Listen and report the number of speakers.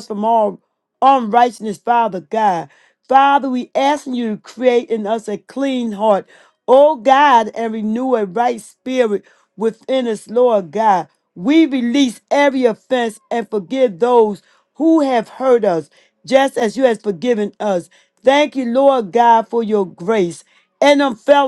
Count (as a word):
one